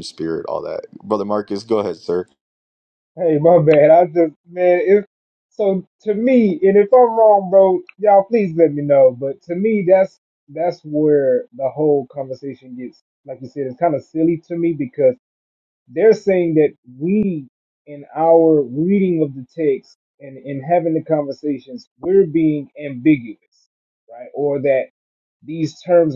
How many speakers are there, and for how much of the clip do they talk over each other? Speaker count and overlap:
2, no overlap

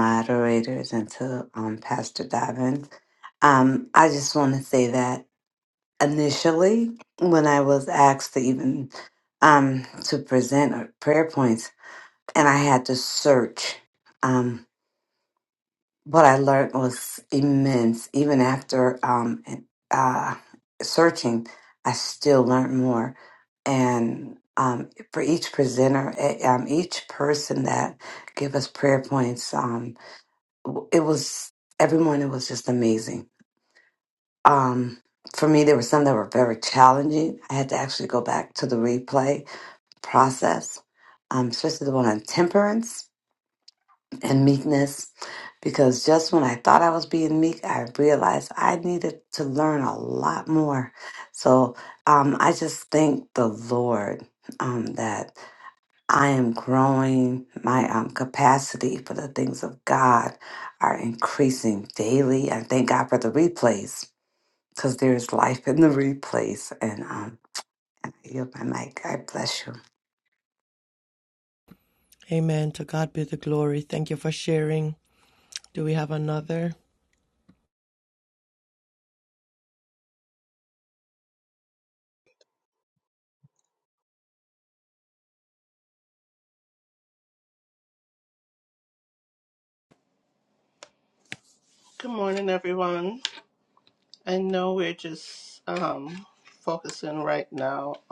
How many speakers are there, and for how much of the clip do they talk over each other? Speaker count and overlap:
3, no overlap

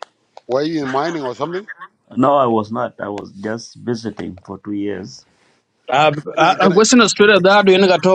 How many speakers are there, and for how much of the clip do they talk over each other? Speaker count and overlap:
3, about 6%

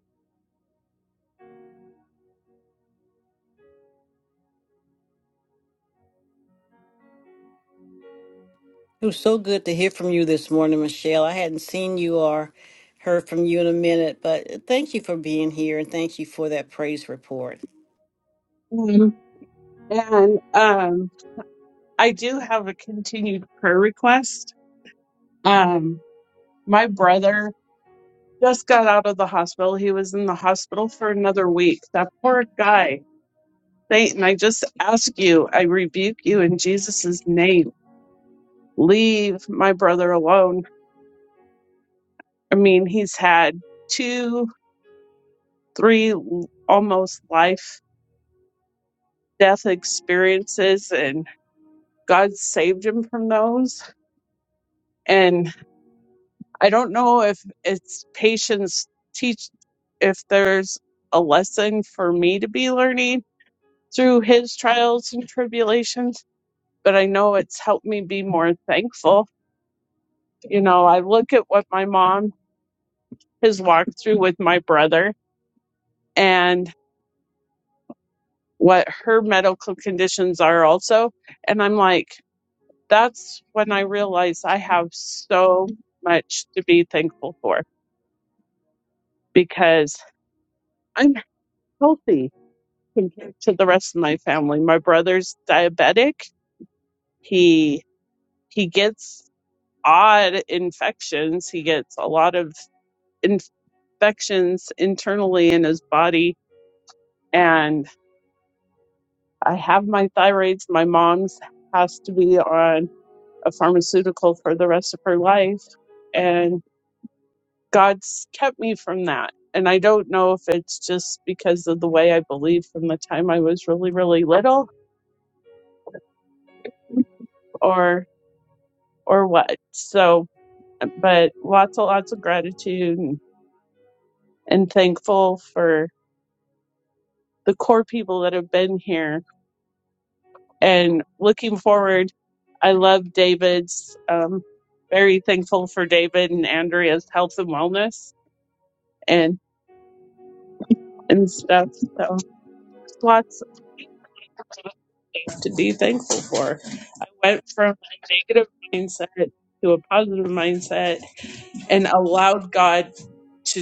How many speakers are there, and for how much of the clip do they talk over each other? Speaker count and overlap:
2, no overlap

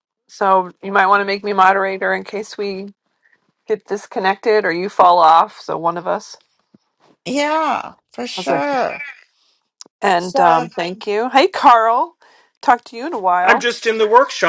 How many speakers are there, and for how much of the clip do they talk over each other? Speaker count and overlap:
3, about 6%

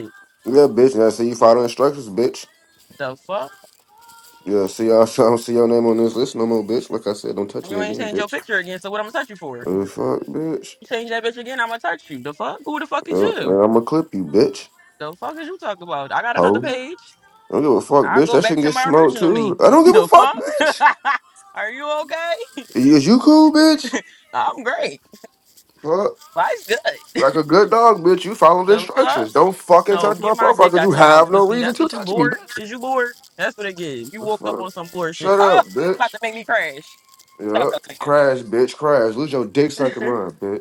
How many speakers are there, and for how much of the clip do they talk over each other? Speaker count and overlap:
2, about 22%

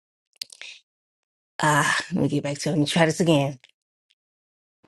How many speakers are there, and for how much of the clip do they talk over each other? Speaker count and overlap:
1, no overlap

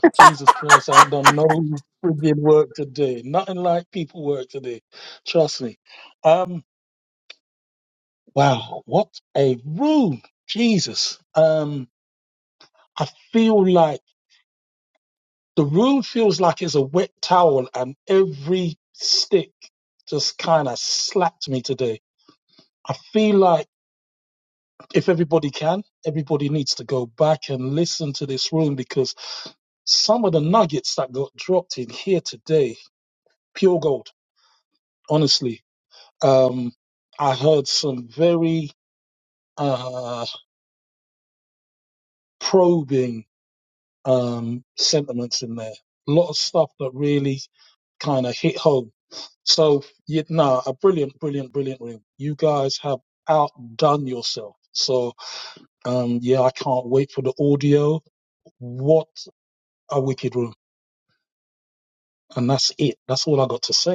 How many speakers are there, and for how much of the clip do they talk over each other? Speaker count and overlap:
1, no overlap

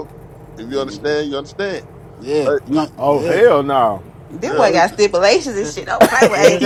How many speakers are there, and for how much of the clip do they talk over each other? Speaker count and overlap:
4, about 23%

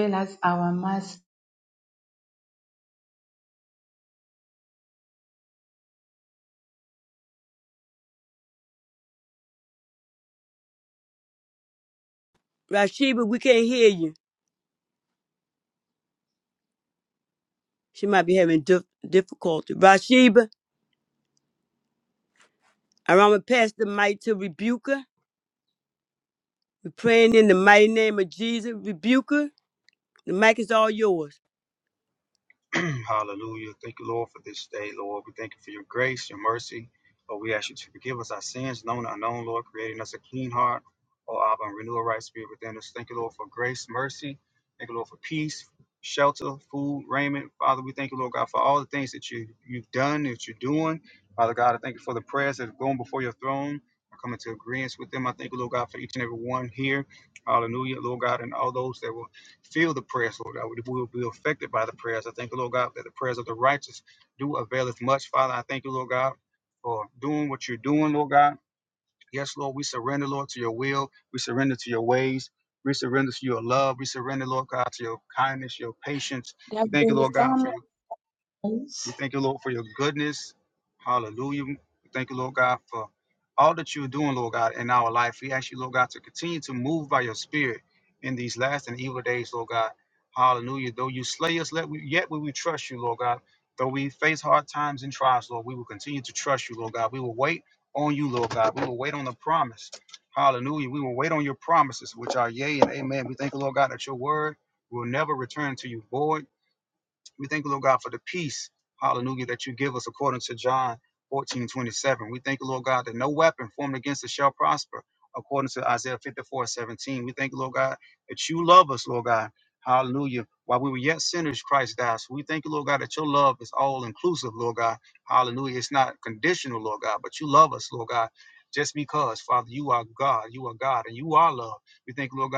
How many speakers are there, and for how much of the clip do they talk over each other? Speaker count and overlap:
3, about 1%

